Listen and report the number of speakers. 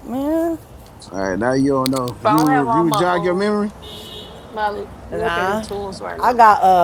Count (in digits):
3